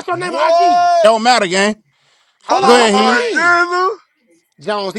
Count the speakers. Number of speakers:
3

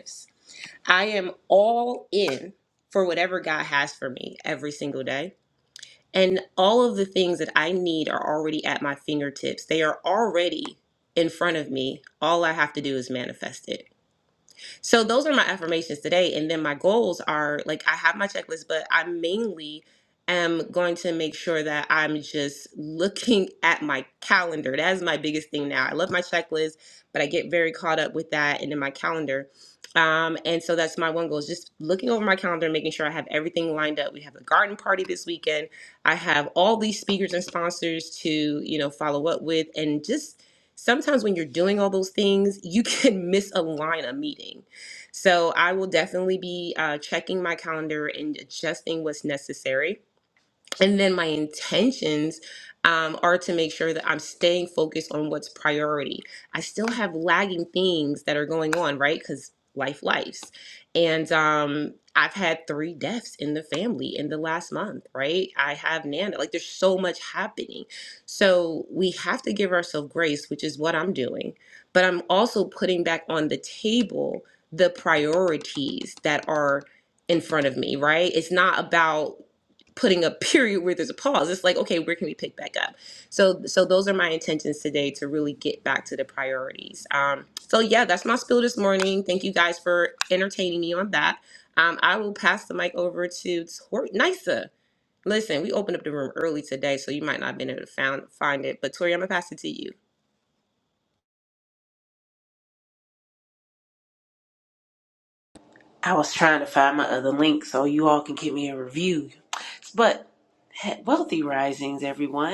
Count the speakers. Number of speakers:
2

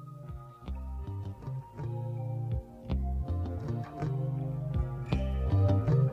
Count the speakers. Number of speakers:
0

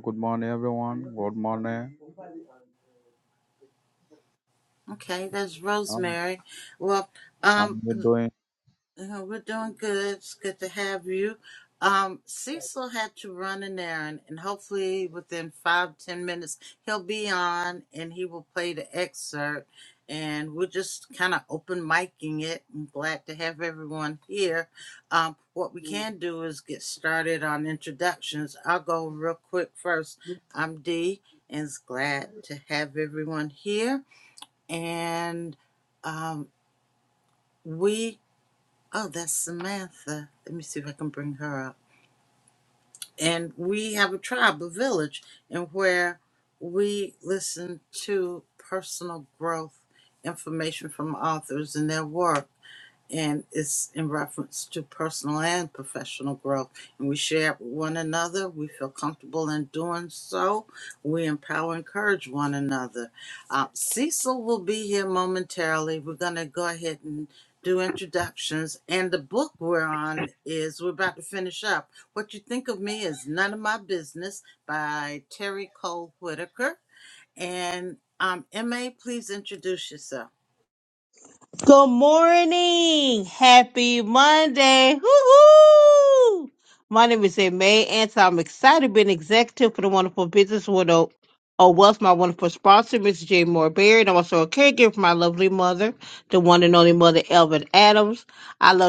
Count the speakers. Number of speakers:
3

